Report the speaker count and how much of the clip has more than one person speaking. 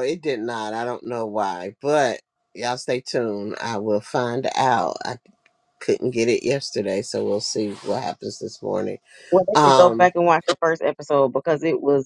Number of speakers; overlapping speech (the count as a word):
two, about 4%